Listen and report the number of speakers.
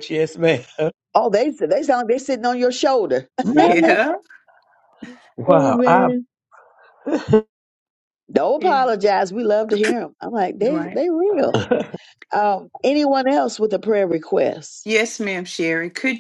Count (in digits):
3